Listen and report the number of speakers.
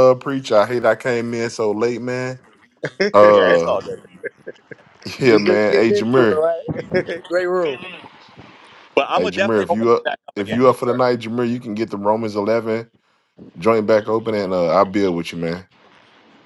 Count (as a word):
three